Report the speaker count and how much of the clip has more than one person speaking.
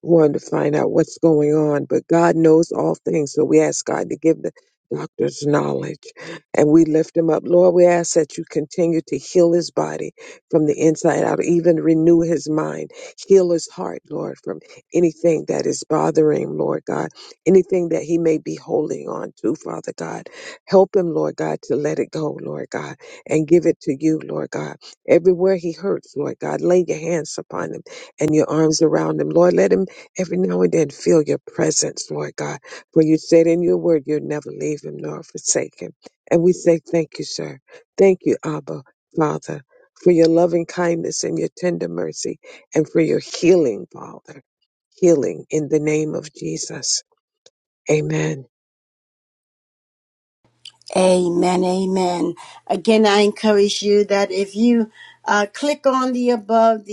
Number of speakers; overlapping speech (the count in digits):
2, no overlap